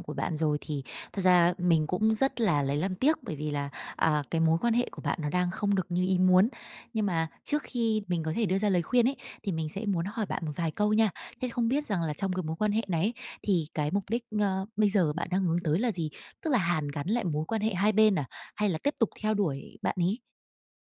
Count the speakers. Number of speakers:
one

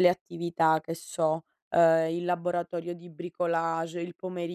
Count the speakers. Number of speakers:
one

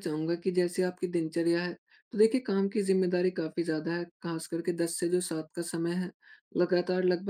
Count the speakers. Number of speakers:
one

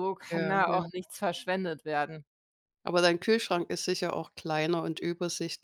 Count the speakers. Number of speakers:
two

